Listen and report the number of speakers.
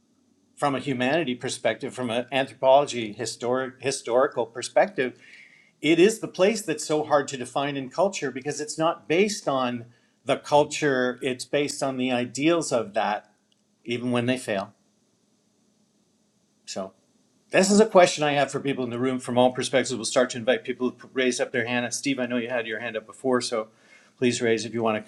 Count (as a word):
one